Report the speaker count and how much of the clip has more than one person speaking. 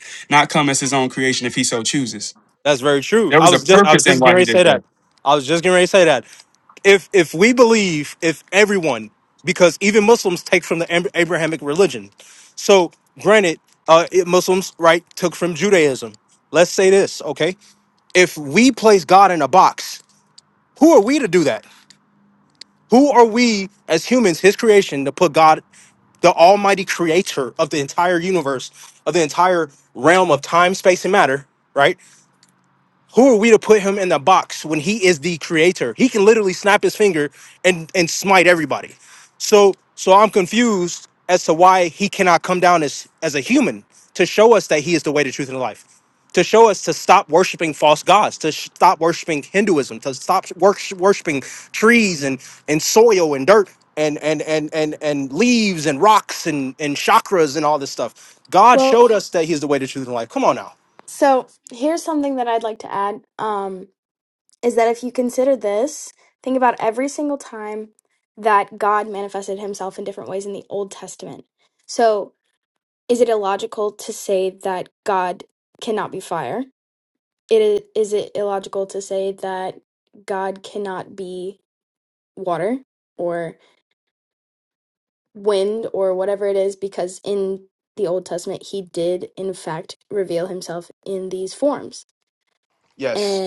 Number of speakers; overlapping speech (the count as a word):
three, about 2%